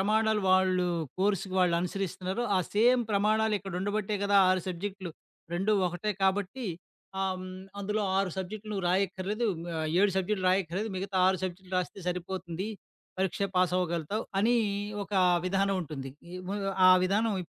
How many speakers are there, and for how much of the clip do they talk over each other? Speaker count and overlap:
1, no overlap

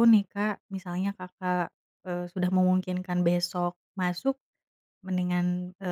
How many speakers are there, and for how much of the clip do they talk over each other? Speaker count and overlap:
1, no overlap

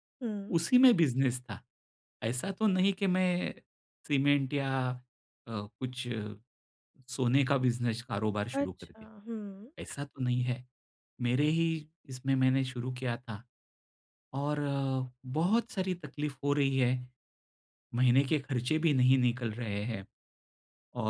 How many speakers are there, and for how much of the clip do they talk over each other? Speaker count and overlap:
2, about 3%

